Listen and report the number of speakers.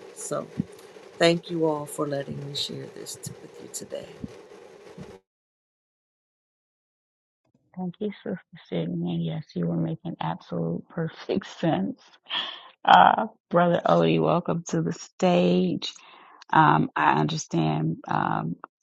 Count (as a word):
two